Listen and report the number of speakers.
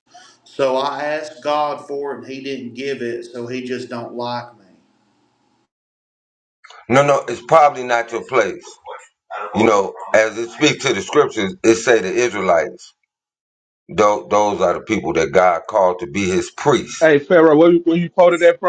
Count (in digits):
3